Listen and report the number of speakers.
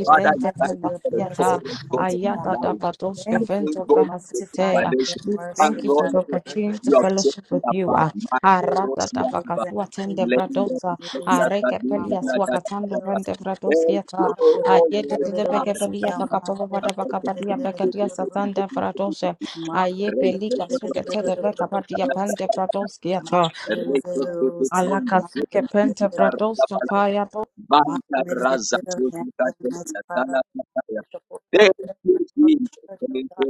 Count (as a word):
three